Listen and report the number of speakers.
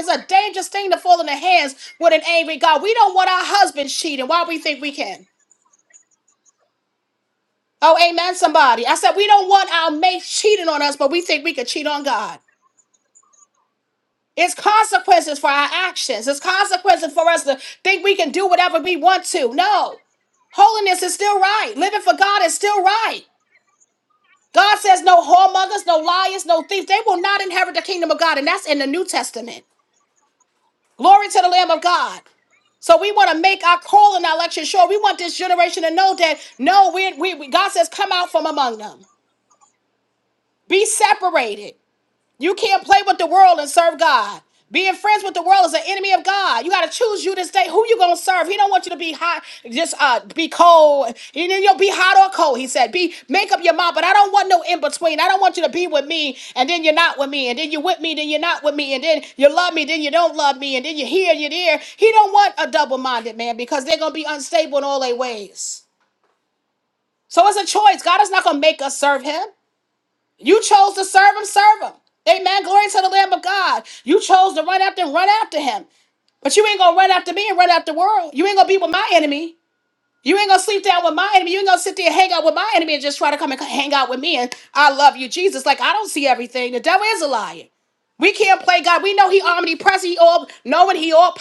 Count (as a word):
one